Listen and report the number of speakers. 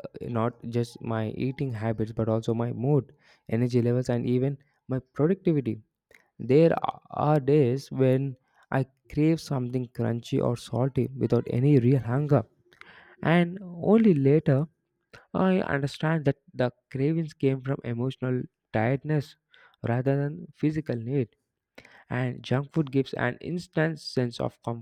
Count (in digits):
1